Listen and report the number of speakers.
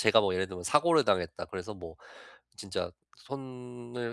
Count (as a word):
one